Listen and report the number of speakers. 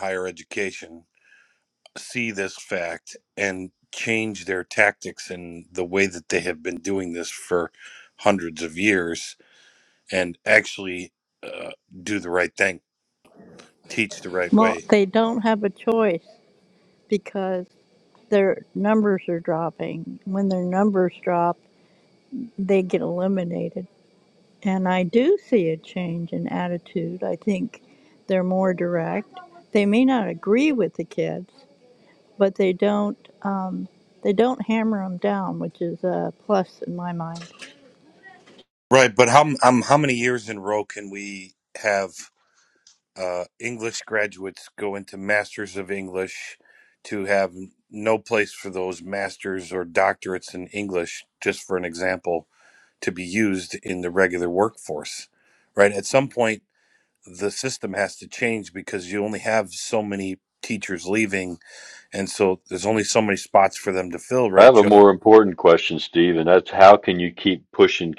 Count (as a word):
three